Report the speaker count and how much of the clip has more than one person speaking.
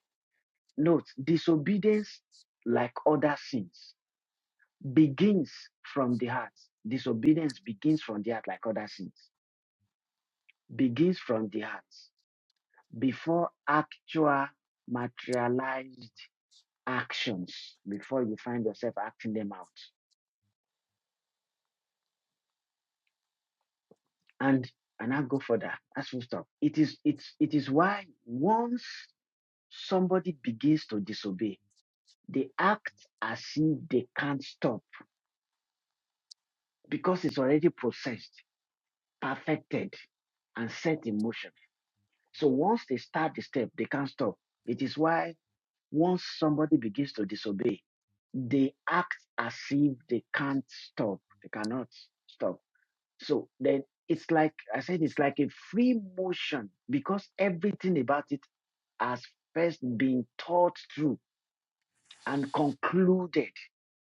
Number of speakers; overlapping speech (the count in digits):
1, no overlap